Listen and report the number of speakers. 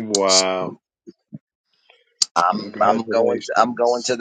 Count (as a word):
two